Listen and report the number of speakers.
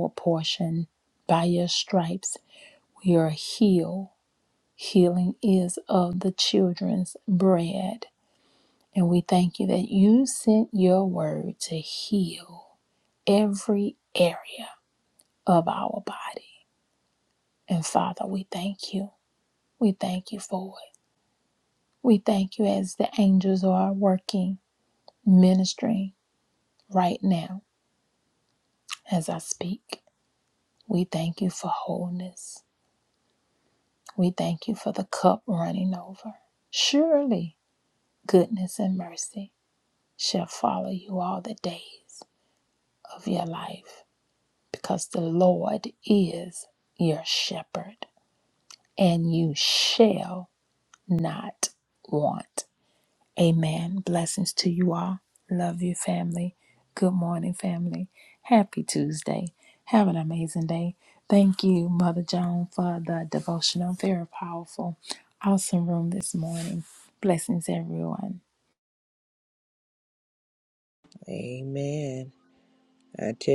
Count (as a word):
two